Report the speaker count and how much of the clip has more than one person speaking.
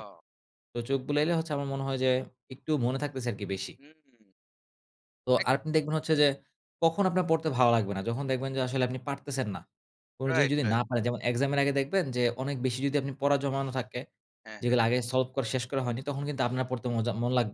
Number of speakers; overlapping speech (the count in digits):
2, about 4%